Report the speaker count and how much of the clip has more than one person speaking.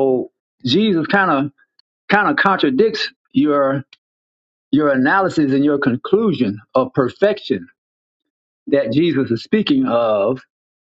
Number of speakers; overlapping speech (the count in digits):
1, no overlap